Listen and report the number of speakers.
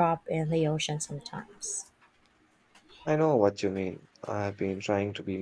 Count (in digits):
2